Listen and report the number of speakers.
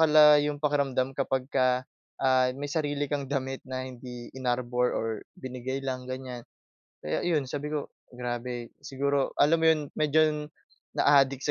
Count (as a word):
one